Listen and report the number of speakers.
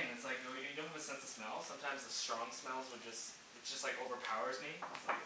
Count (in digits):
1